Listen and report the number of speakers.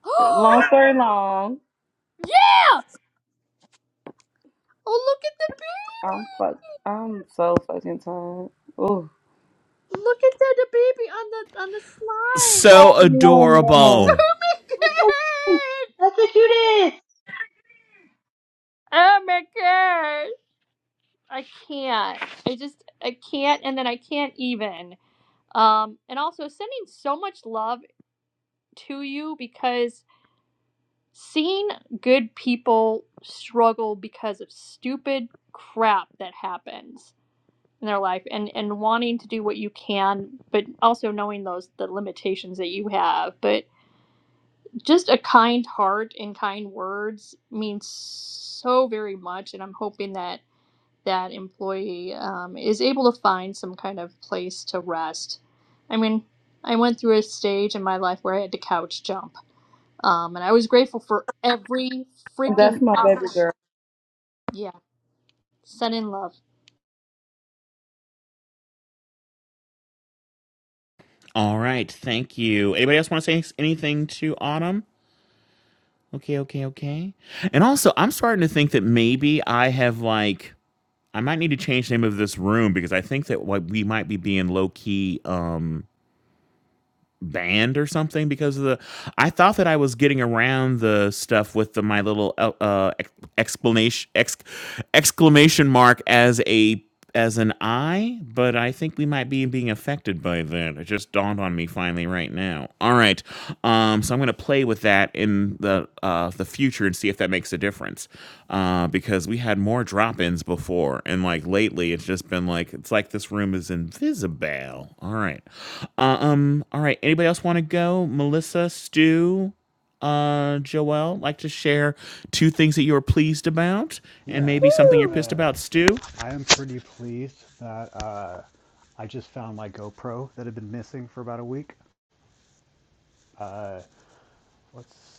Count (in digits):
5